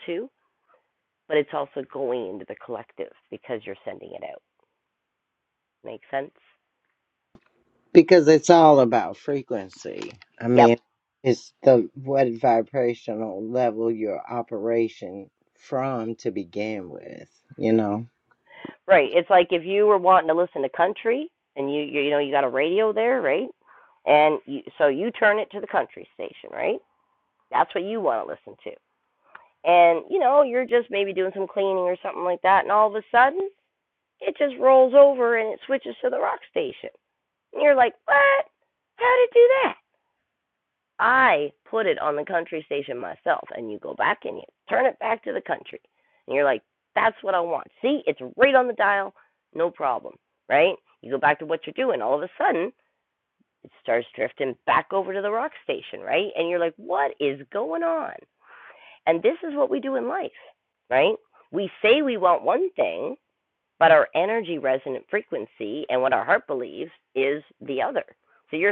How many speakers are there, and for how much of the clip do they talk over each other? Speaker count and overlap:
2, under 1%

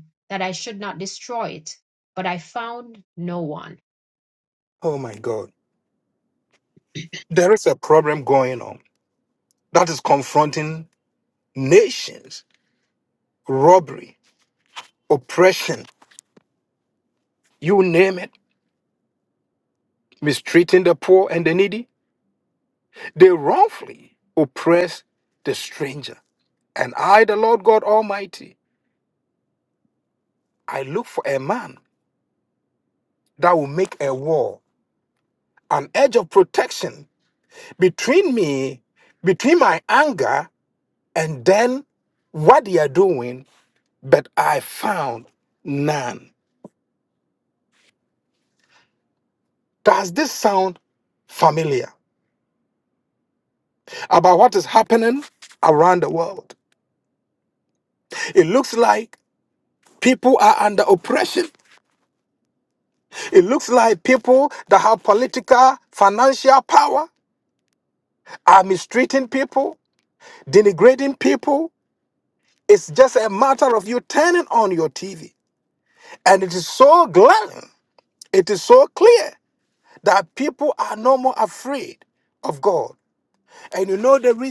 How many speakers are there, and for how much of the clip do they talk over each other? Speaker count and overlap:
2, no overlap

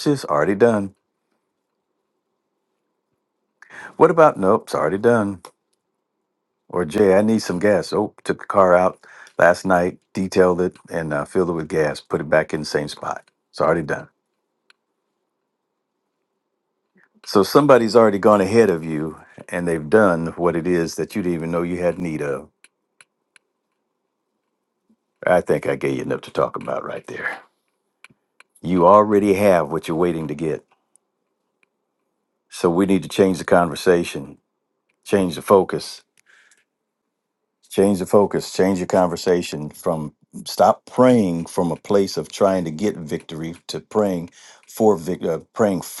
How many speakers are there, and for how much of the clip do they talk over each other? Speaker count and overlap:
1, no overlap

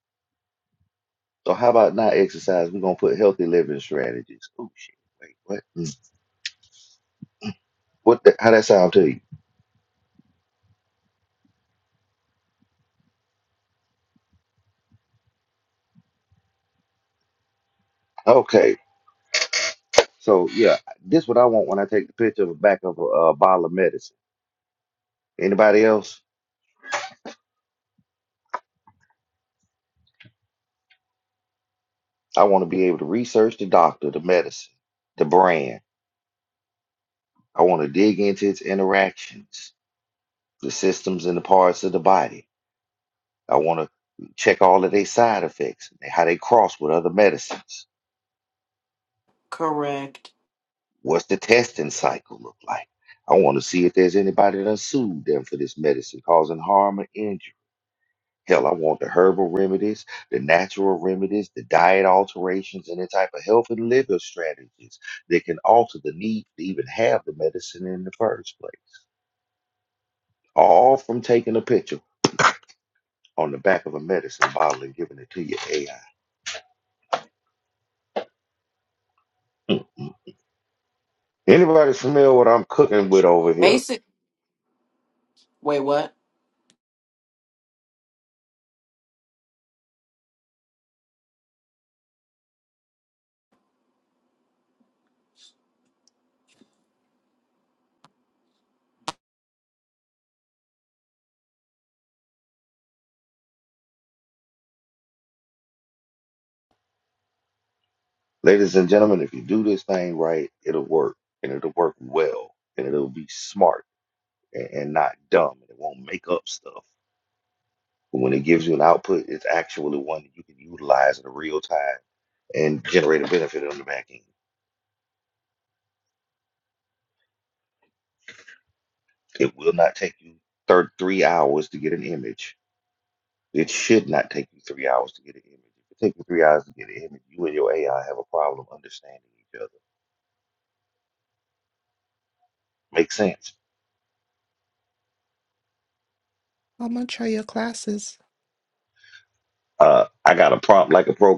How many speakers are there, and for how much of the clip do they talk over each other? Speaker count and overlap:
3, under 1%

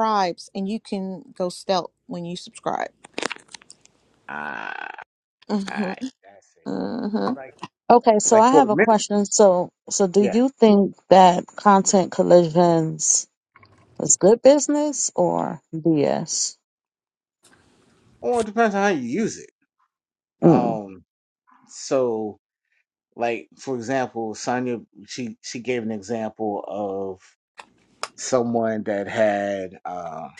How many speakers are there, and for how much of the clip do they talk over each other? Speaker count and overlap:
3, about 4%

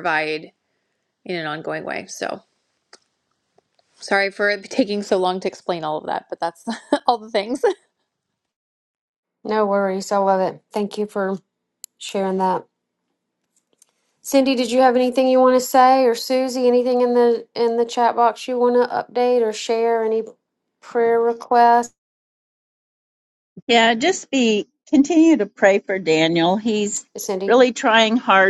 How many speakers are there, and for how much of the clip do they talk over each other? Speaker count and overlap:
3, under 1%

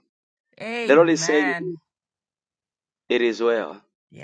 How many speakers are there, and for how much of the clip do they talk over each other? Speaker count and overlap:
2, about 15%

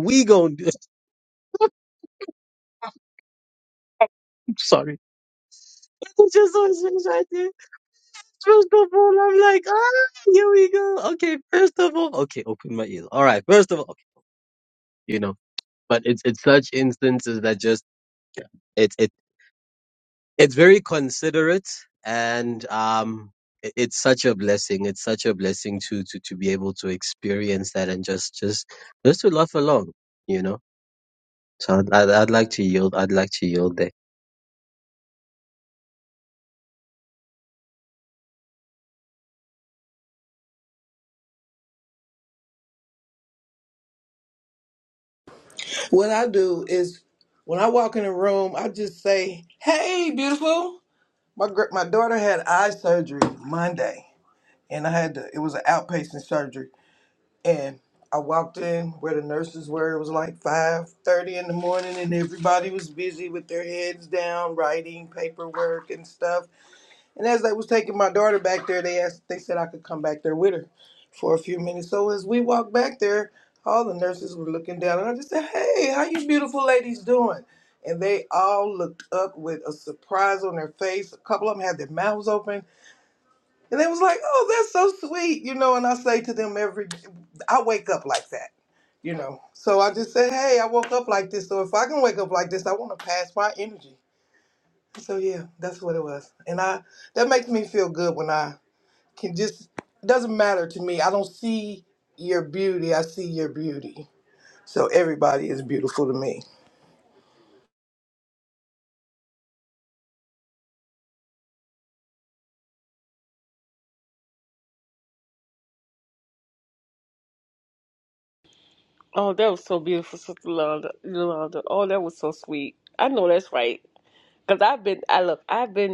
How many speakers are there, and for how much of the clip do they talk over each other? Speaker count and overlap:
3, no overlap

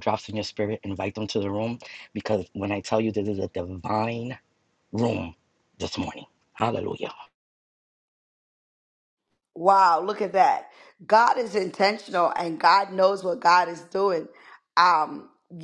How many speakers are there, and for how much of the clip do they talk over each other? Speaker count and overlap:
2, no overlap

